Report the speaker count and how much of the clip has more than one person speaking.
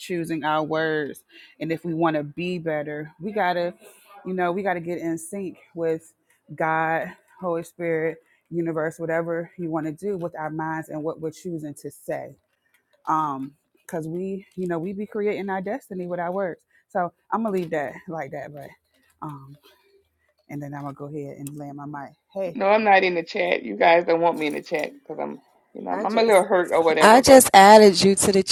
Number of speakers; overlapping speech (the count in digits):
3, about 3%